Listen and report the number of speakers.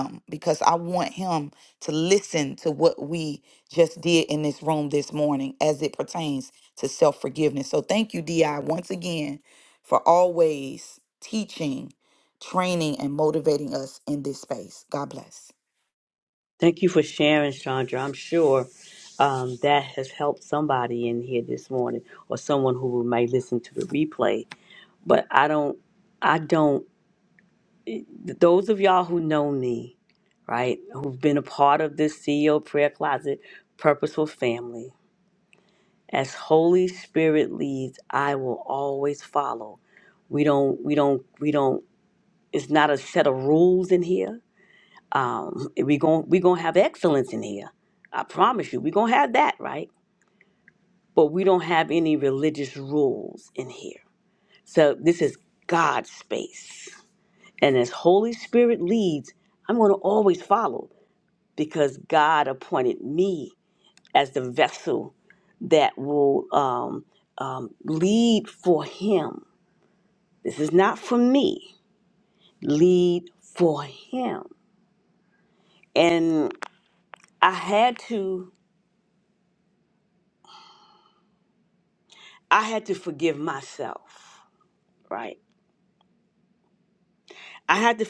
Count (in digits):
2